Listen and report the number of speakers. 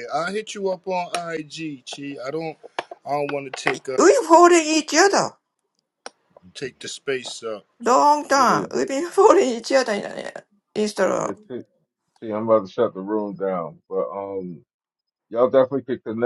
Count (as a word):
three